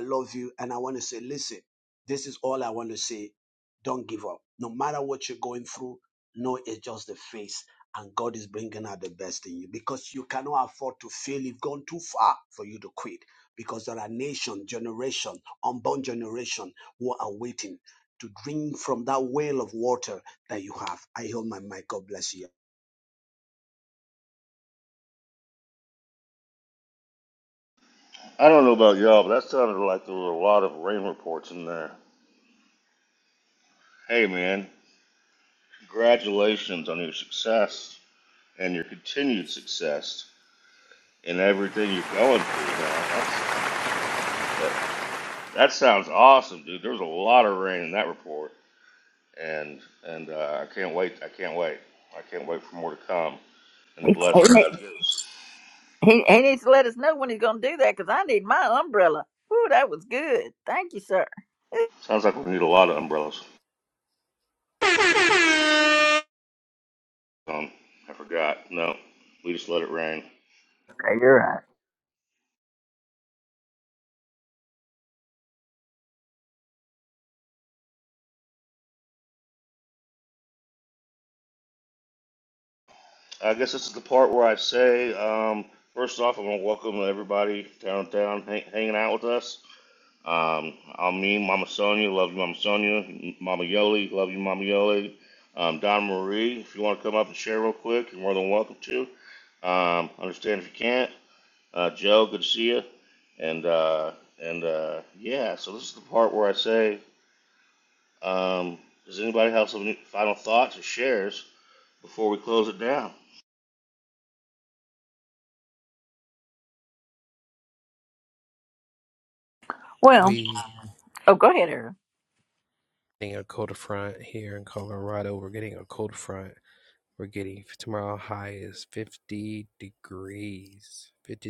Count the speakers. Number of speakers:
4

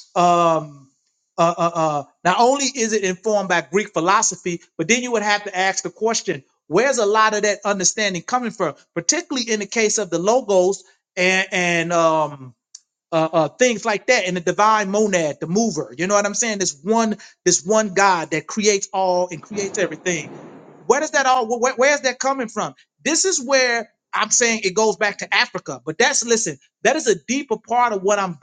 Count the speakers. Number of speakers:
1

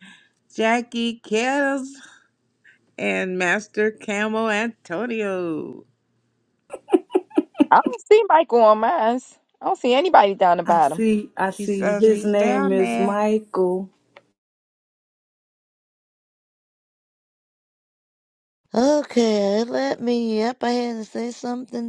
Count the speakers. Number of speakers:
4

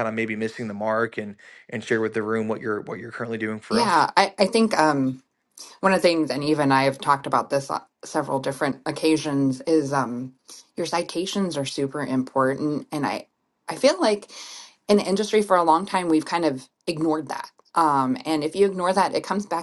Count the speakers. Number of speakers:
2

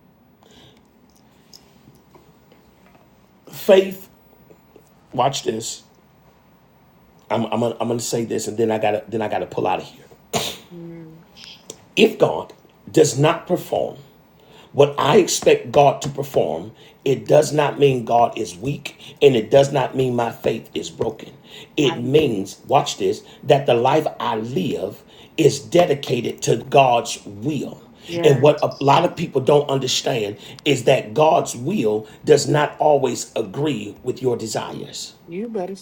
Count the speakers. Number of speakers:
2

